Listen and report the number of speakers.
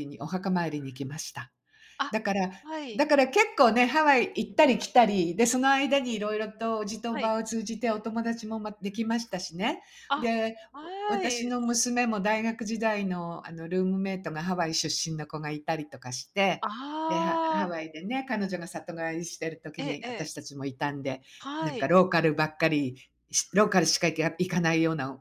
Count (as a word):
two